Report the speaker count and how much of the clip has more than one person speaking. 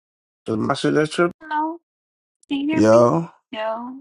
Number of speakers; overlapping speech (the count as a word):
two, about 8%